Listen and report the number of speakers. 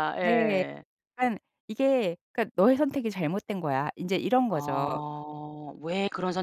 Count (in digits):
2